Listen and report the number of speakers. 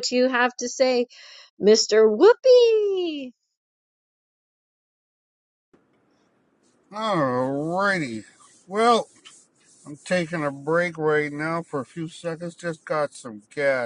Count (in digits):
2